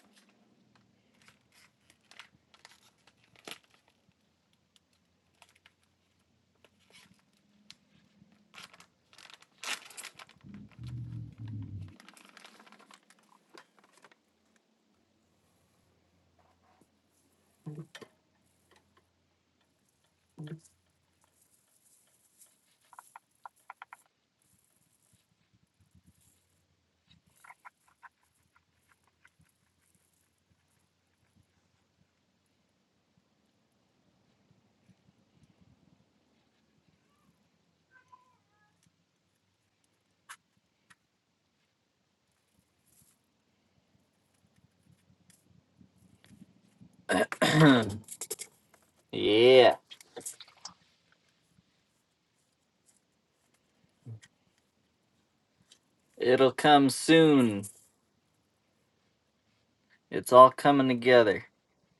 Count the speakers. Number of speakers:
one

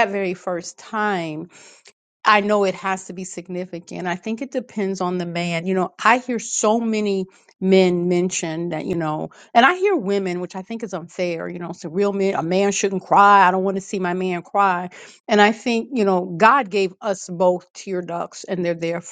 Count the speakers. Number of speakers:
one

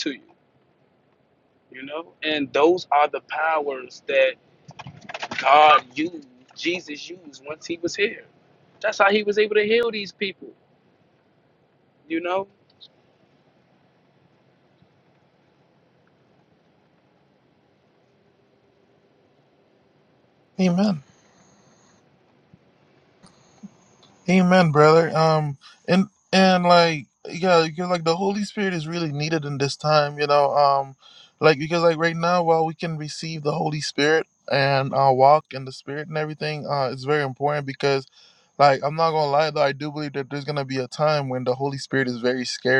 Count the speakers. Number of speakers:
two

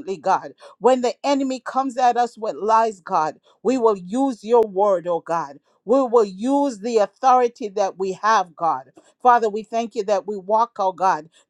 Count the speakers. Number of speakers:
one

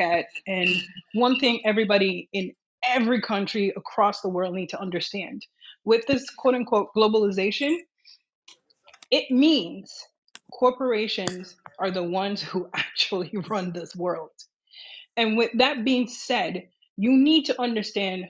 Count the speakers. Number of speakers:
one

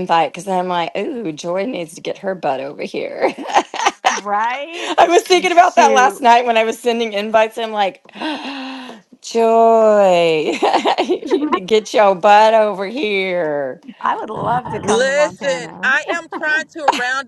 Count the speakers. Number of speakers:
three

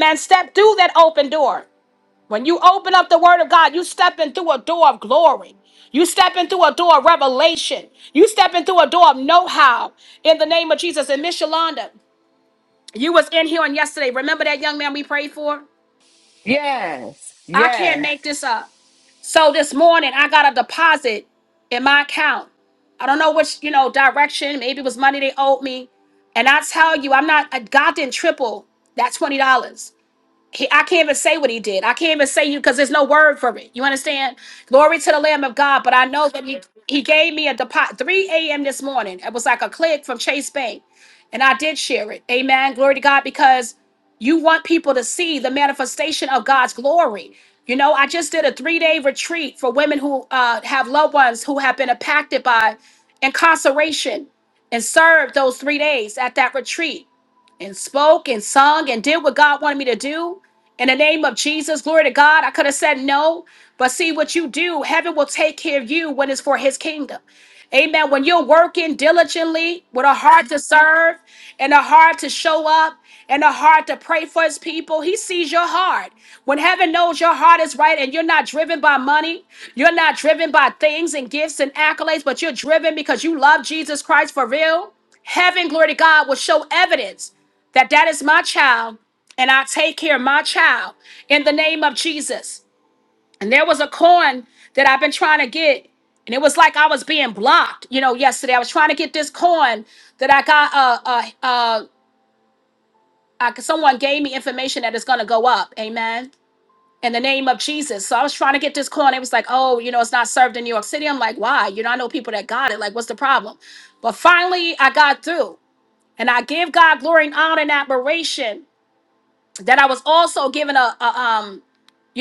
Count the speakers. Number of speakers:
two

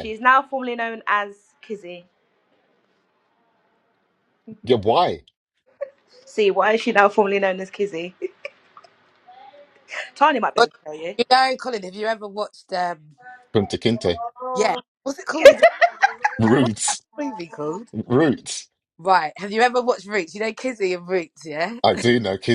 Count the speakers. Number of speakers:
three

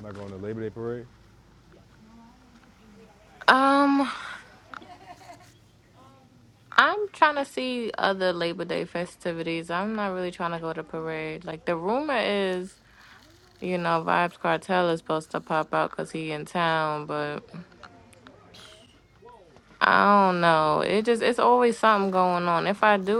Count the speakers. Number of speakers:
two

